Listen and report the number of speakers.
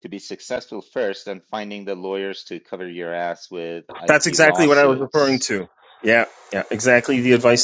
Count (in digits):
2